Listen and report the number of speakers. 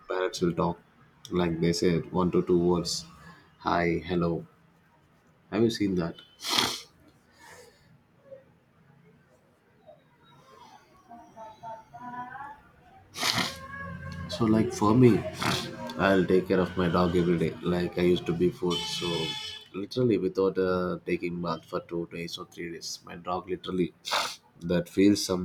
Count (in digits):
1